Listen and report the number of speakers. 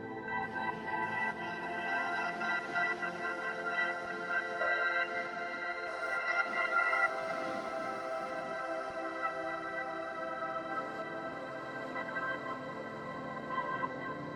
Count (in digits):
0